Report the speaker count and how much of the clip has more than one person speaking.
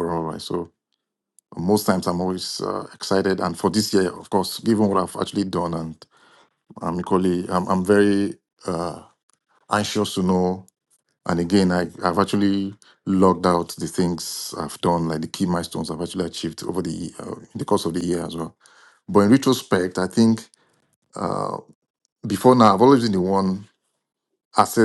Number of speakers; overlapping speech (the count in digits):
1, no overlap